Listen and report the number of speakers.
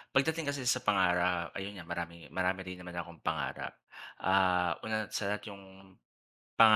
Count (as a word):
one